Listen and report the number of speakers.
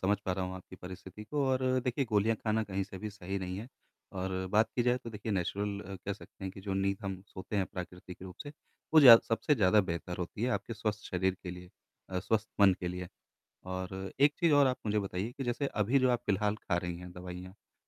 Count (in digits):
1